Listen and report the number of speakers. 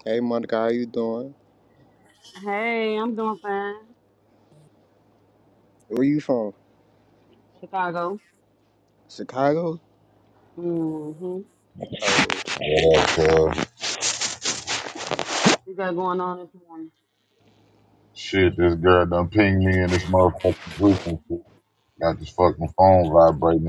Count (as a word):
three